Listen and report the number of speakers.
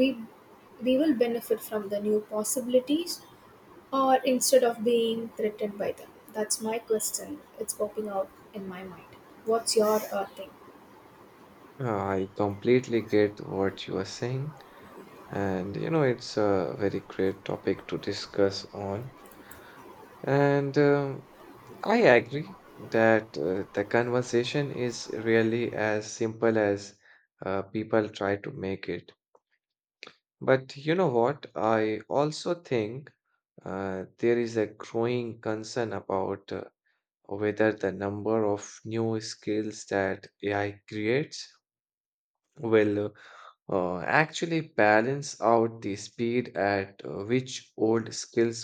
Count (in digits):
2